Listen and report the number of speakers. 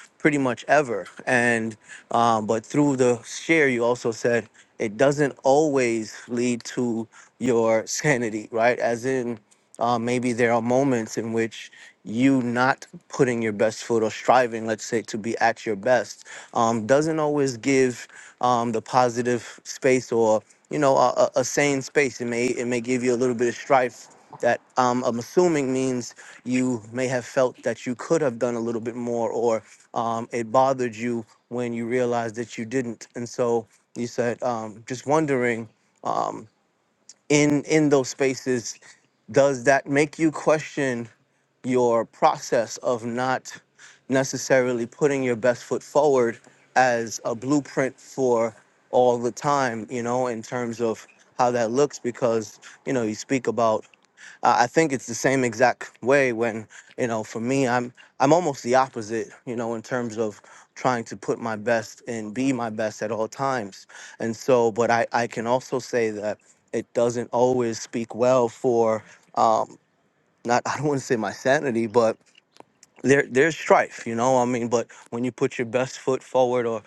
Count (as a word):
one